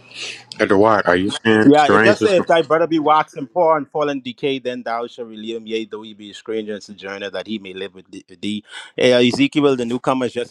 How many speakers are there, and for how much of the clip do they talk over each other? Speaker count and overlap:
two, about 7%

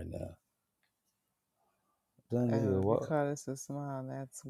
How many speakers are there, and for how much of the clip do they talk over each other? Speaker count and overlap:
two, about 15%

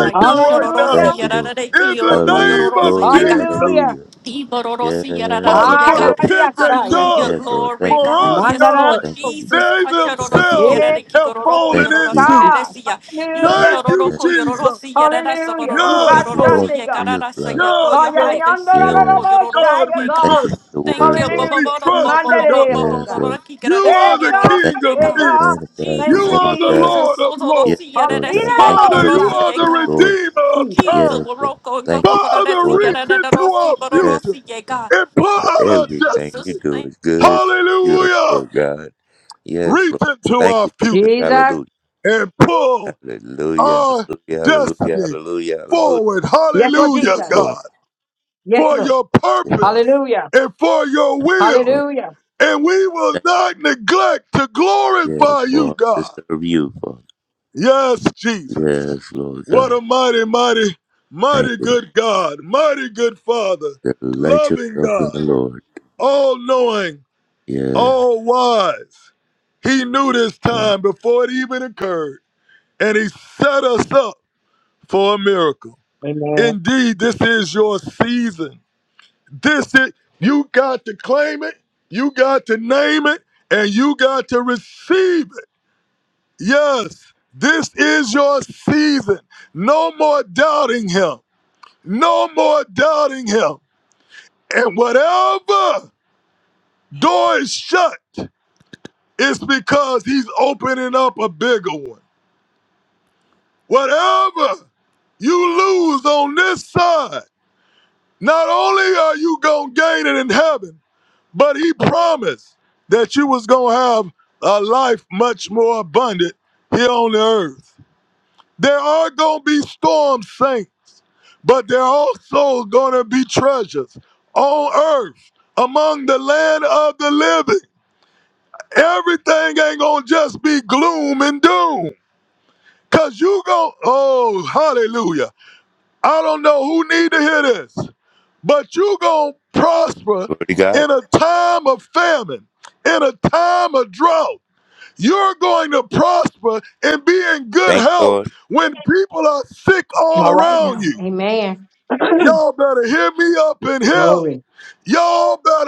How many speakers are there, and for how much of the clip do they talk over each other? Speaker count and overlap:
four, about 28%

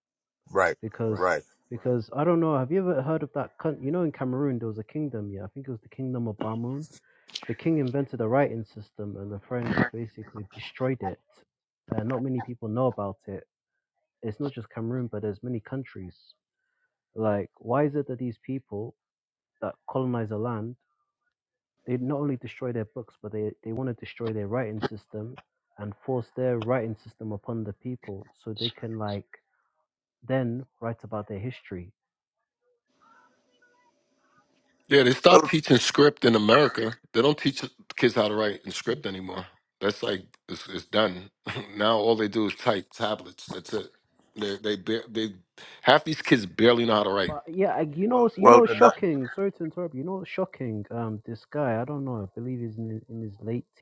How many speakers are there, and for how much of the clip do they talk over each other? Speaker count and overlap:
three, about 2%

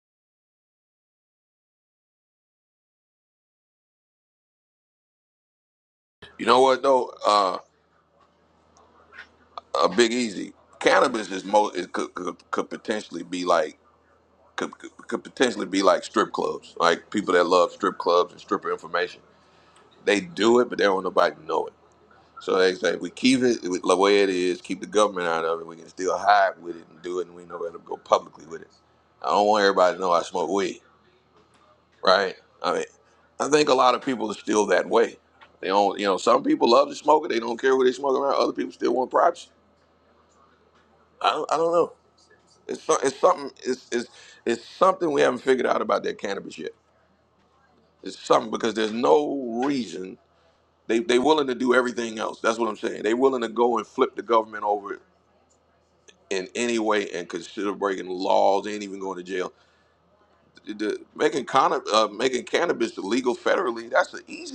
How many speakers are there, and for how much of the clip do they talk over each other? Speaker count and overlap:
one, no overlap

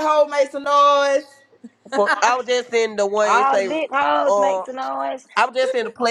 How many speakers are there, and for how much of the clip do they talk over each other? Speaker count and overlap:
three, about 14%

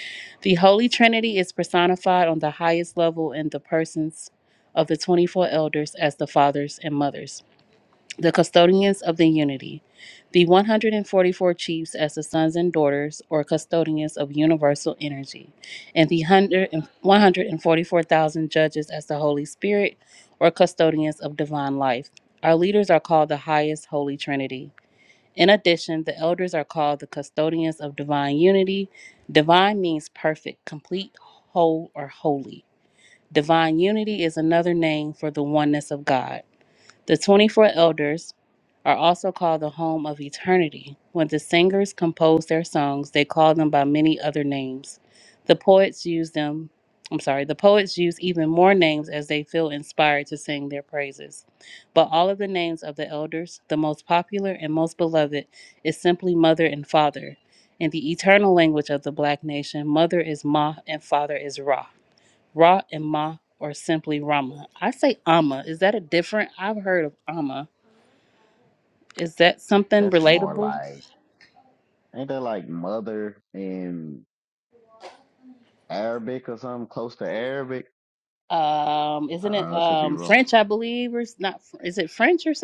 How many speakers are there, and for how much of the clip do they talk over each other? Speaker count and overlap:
two, about 2%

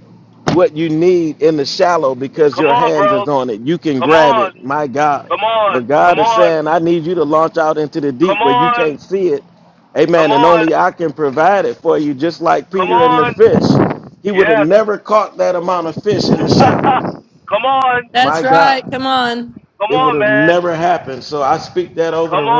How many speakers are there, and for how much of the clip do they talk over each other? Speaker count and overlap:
three, about 27%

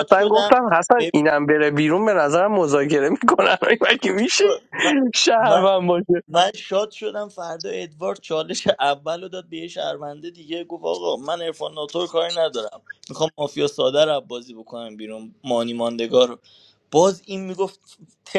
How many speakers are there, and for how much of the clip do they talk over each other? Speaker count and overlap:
two, about 8%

